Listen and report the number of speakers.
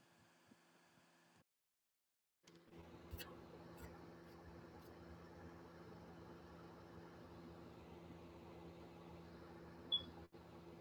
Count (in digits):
0